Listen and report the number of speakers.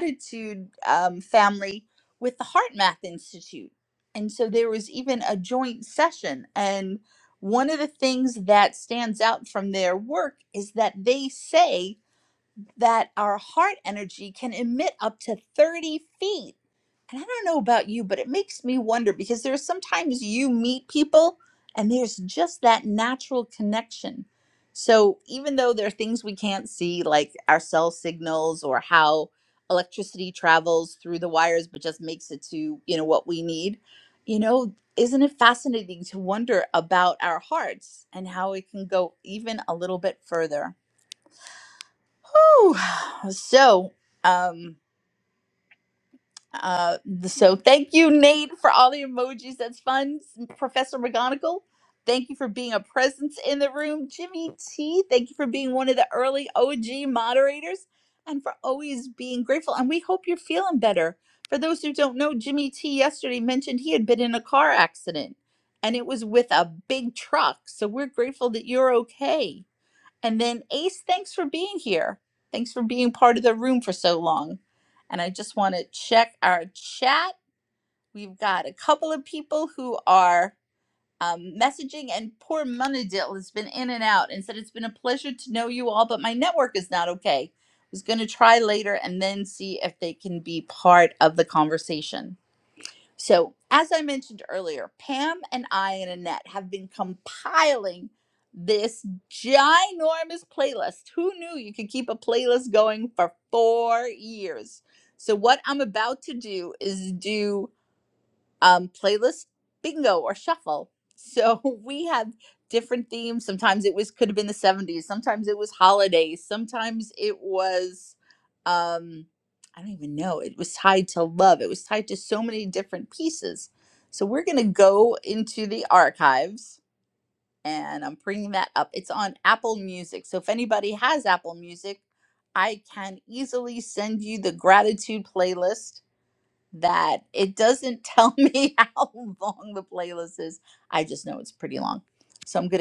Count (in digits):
1